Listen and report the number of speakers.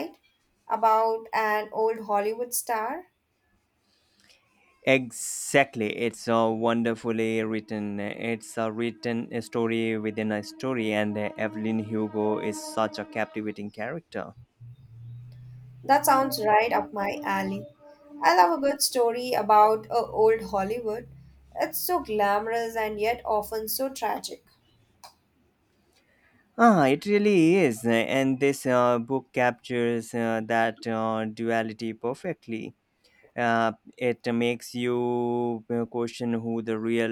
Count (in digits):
2